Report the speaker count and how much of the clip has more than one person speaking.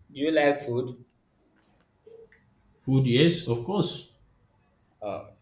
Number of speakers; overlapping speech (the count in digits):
2, no overlap